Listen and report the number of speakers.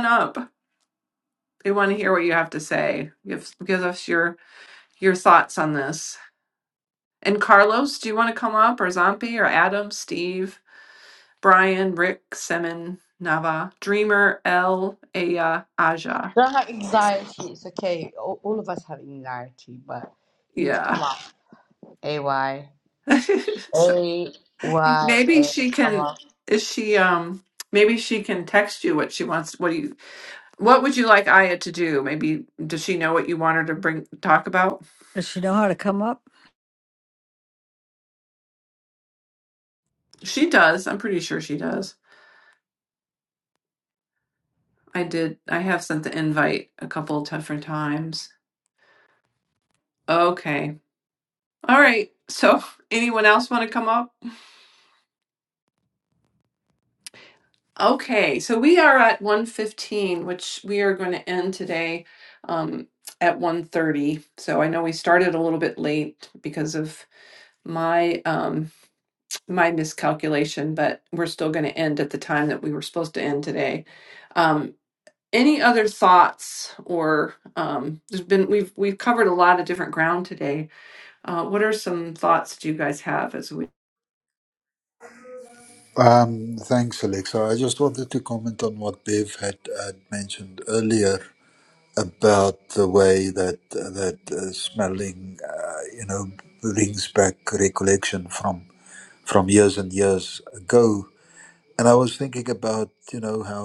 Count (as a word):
four